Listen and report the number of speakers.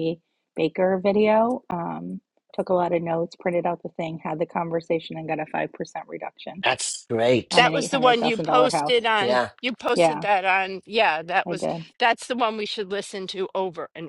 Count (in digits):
3